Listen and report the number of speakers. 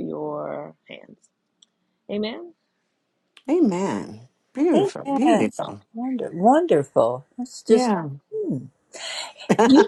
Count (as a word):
three